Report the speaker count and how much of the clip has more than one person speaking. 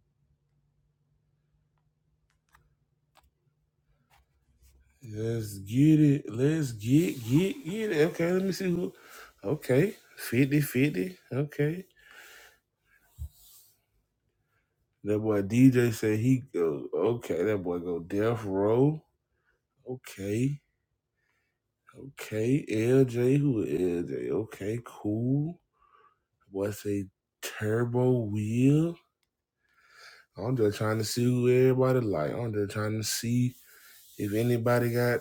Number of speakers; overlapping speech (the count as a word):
one, no overlap